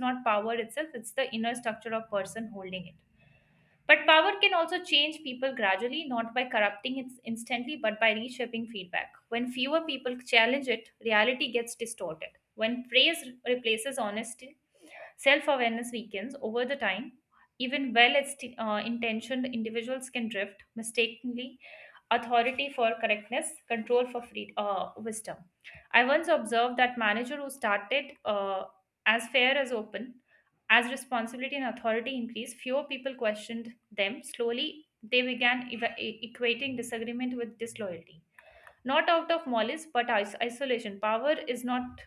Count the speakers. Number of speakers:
1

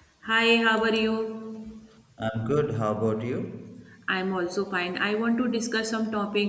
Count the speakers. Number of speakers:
2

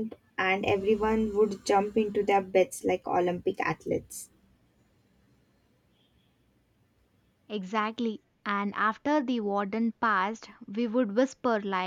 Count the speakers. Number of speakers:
2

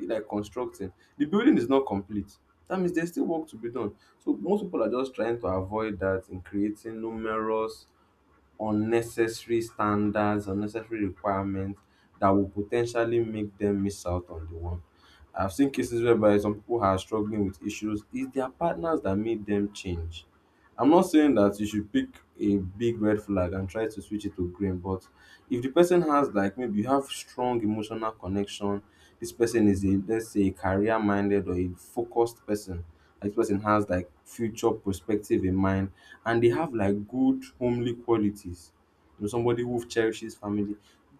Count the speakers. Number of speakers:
1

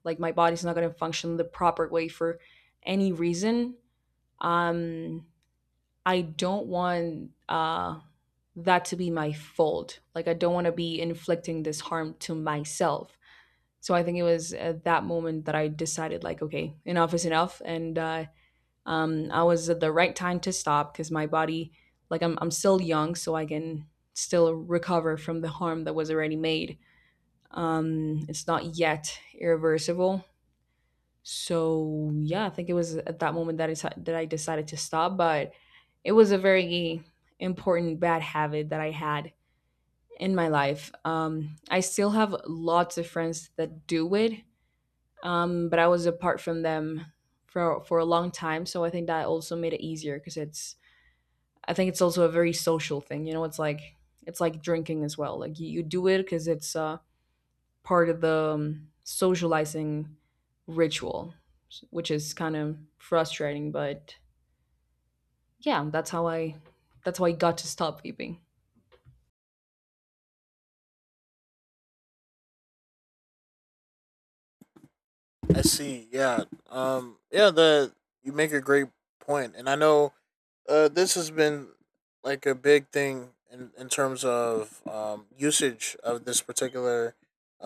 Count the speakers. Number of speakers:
2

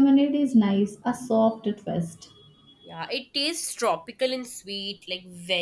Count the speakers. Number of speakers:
2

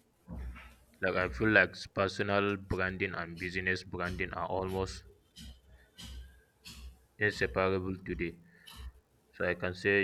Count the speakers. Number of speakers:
1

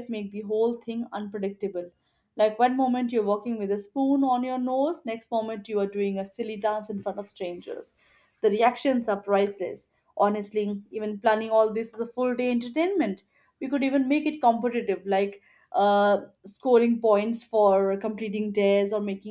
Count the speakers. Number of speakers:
1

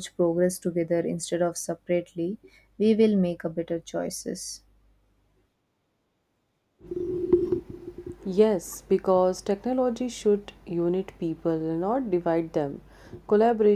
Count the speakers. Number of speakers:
2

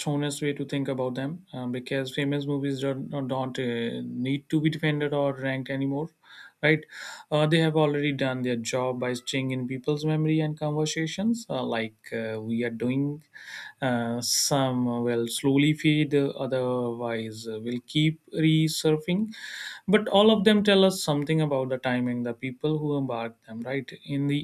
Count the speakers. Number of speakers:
1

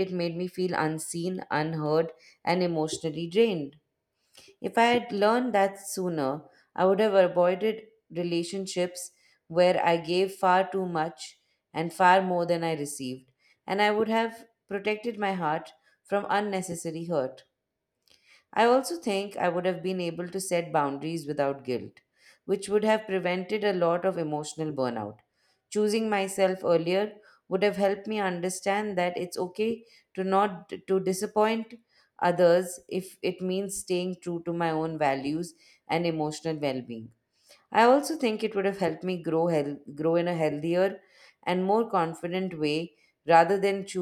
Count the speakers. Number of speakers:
1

